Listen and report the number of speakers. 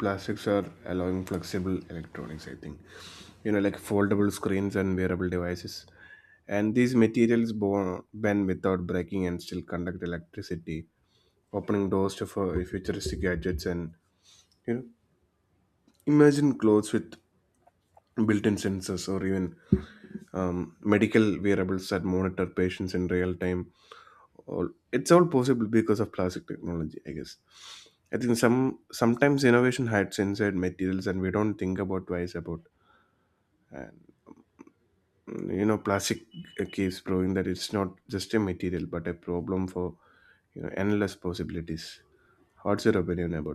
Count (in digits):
1